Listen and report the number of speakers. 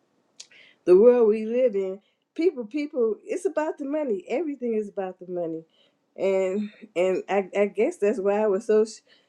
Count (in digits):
1